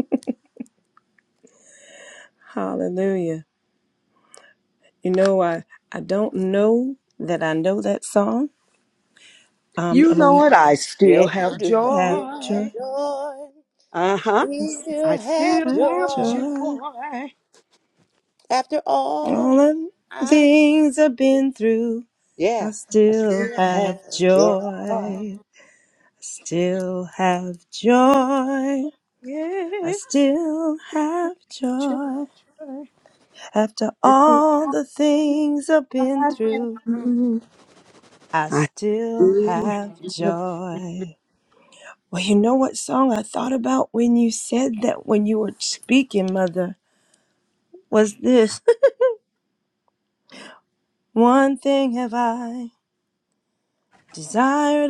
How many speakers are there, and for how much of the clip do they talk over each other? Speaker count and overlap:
3, about 16%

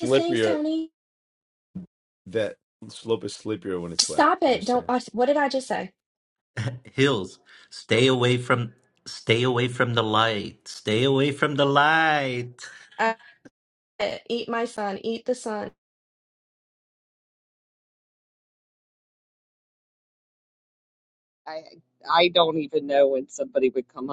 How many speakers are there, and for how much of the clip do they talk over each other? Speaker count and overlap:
4, about 6%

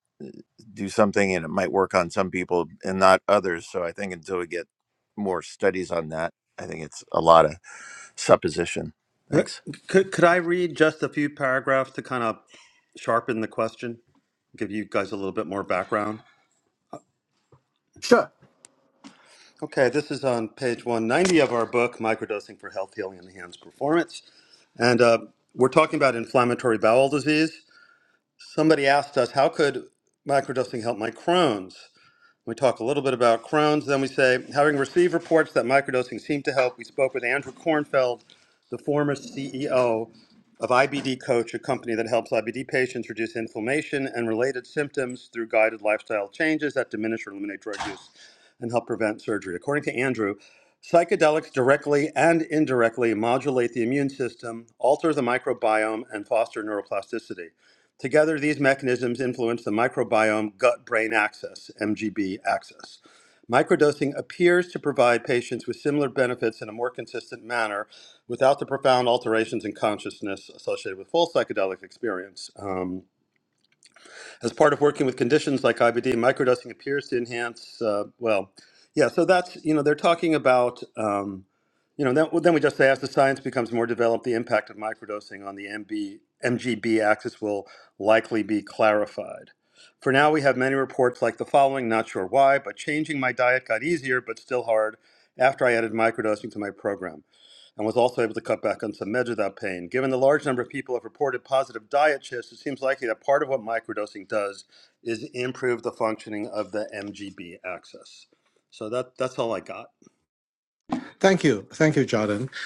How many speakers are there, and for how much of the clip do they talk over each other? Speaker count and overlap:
3, under 1%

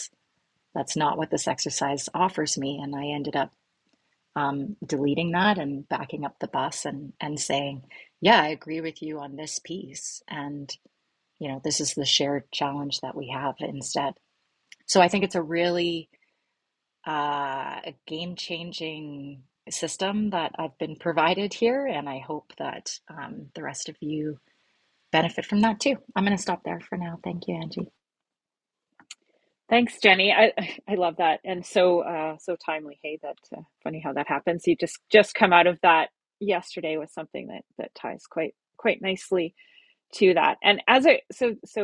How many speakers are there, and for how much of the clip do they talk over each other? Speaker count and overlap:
2, no overlap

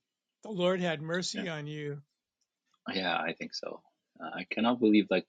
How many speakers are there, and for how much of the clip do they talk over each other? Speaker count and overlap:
2, about 2%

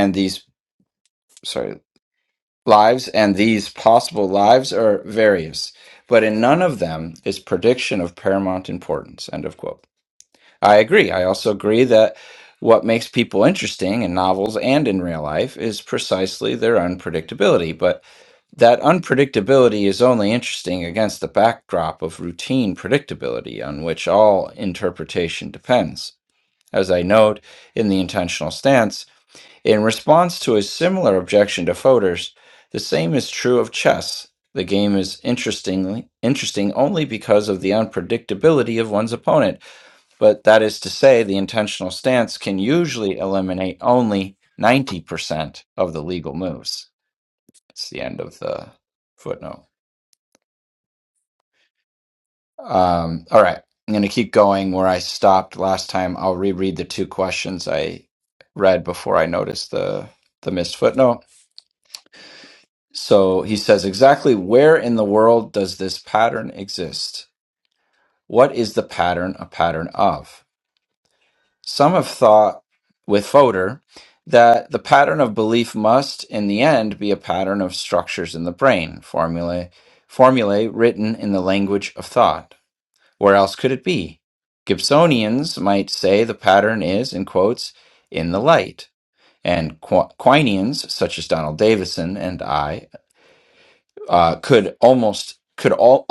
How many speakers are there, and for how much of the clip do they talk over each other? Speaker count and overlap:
1, no overlap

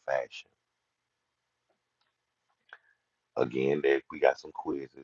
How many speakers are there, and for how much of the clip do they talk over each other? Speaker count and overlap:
1, no overlap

